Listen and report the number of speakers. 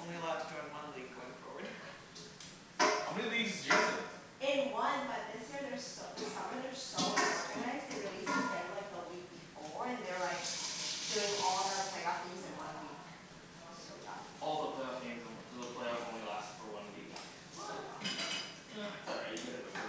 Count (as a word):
four